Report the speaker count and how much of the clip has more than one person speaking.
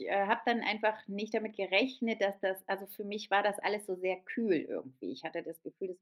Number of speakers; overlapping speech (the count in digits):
1, no overlap